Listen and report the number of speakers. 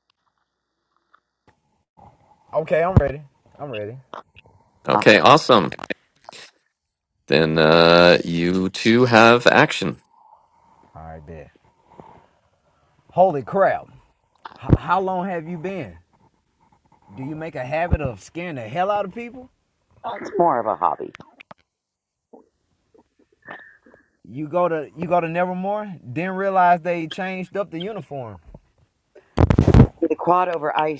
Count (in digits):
3